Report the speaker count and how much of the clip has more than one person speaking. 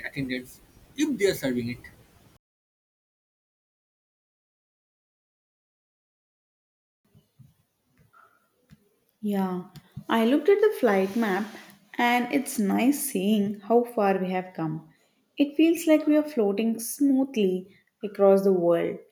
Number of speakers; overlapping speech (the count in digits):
2, no overlap